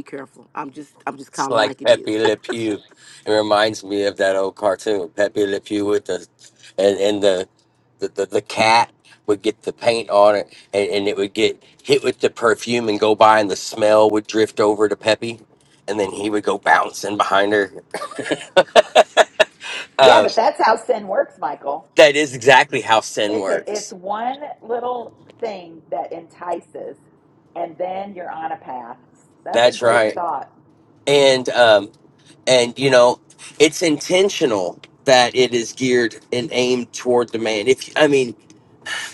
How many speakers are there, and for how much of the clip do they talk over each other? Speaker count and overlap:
three, about 5%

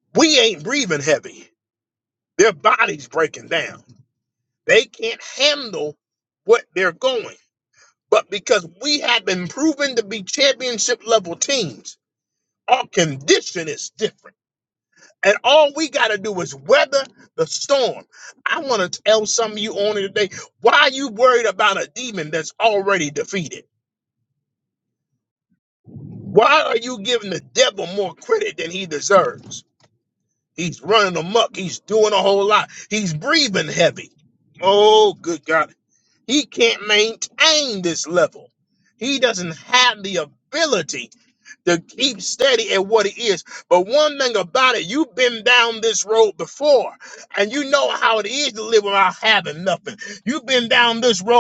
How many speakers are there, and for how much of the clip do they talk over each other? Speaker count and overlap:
one, no overlap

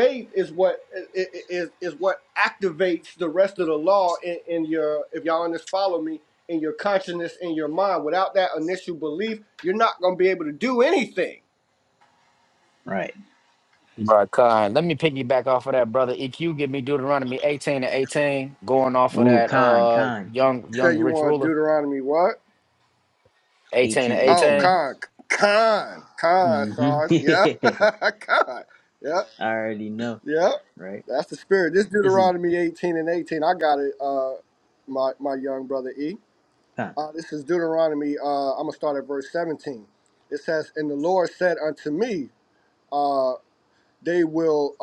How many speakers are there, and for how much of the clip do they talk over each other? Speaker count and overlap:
three, about 9%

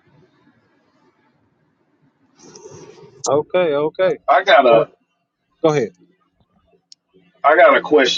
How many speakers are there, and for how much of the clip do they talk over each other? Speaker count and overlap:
two, about 2%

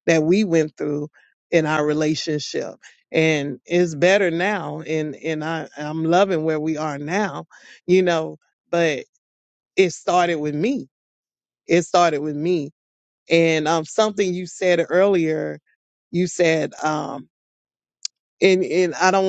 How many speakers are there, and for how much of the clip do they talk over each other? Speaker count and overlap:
one, no overlap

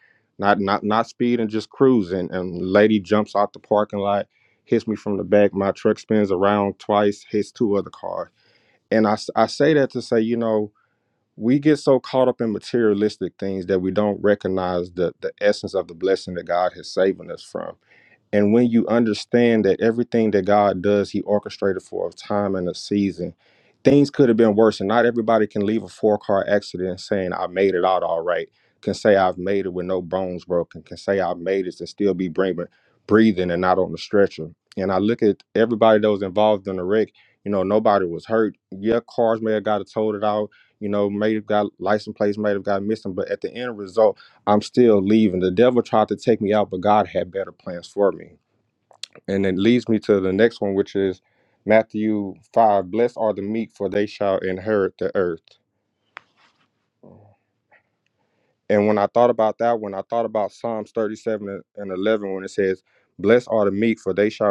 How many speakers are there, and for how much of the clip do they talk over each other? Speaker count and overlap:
one, no overlap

